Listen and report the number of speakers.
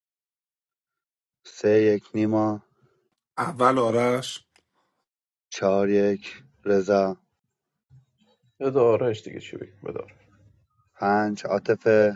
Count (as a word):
three